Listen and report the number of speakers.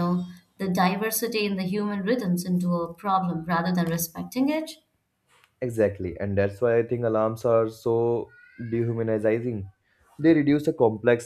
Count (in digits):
2